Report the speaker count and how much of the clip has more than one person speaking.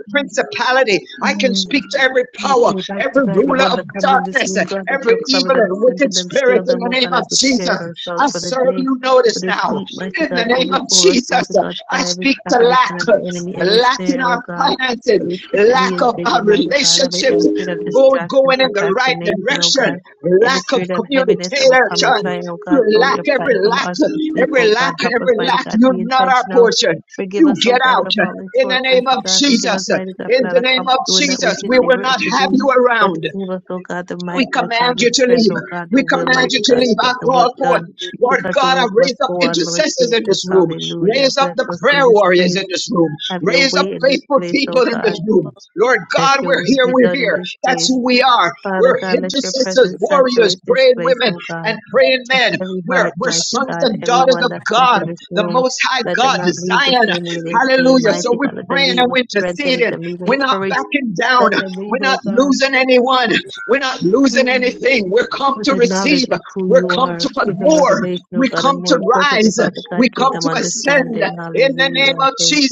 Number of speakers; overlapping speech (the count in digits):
2, about 73%